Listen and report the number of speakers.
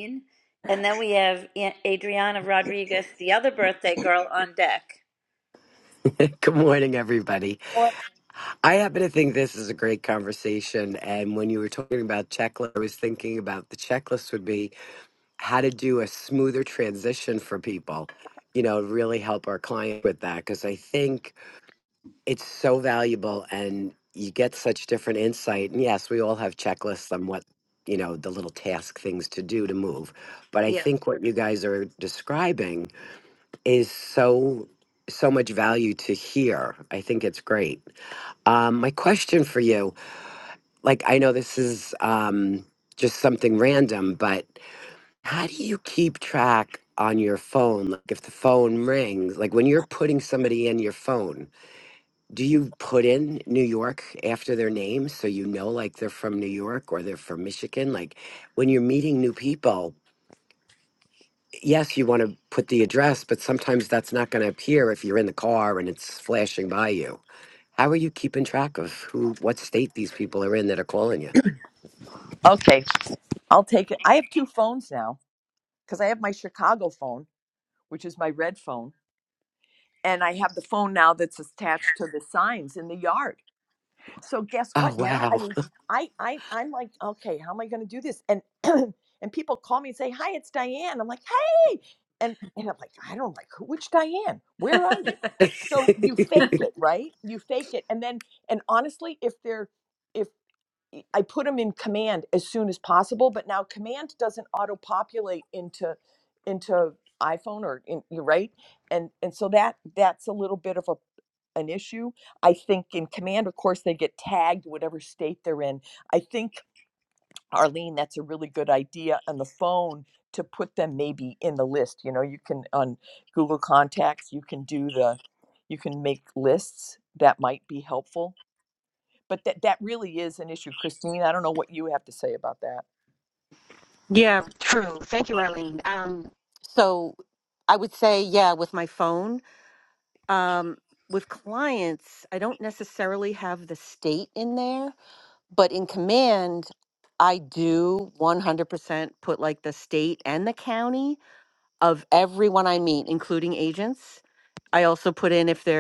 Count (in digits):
4